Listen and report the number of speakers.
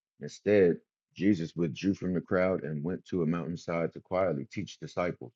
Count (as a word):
one